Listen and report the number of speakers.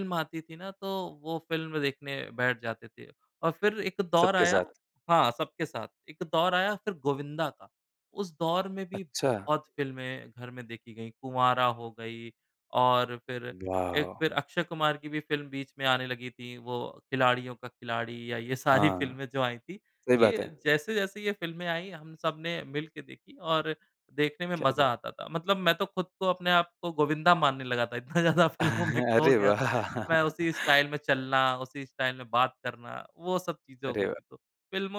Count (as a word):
two